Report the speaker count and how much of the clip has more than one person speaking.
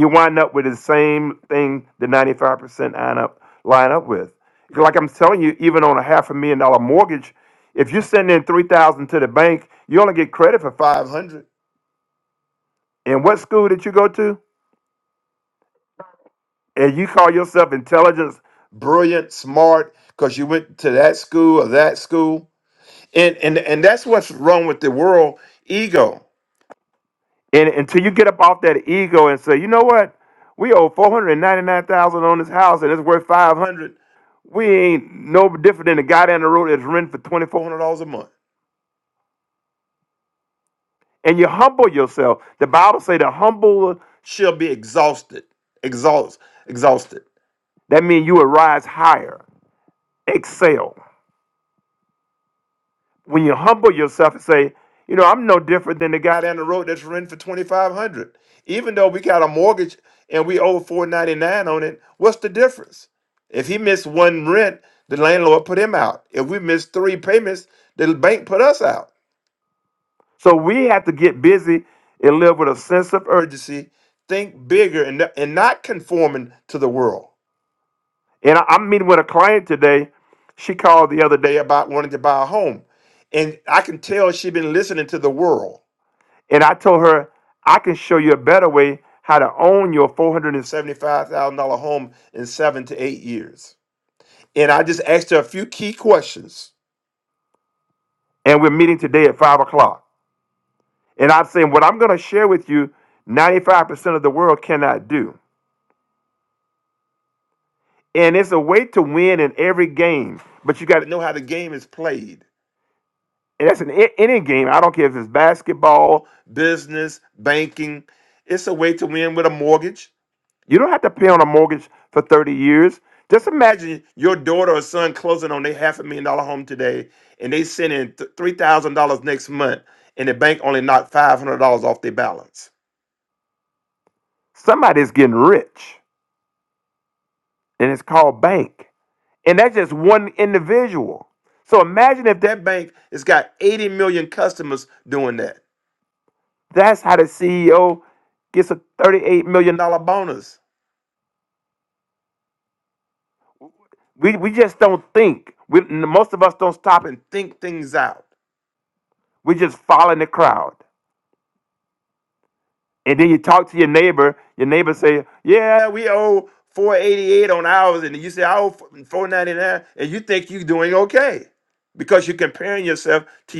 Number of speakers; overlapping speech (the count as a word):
one, no overlap